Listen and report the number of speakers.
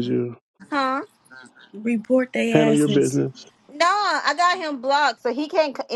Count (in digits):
3